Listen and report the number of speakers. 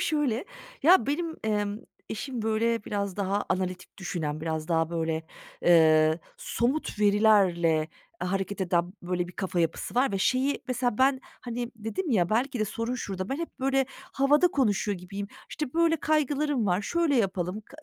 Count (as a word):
one